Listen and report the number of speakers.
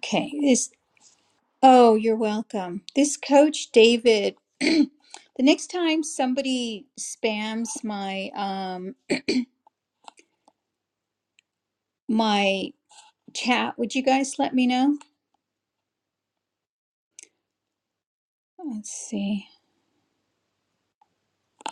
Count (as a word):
one